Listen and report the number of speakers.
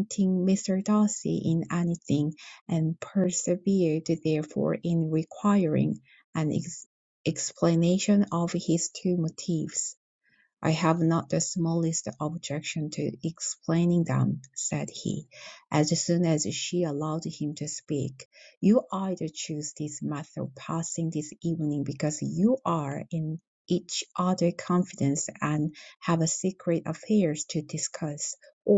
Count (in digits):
1